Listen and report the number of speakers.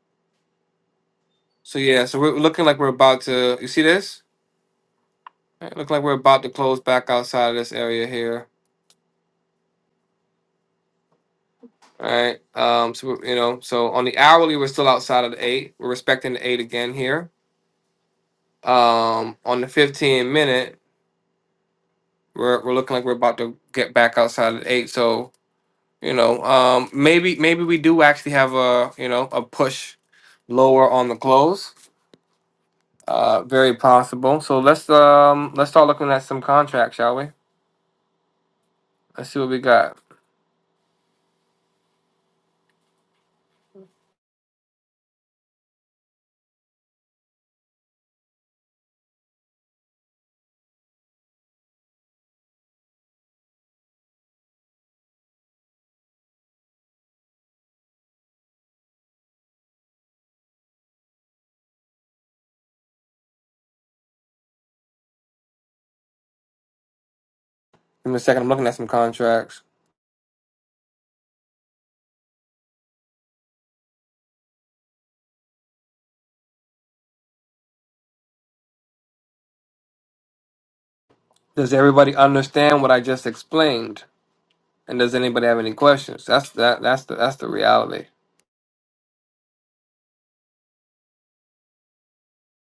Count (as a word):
one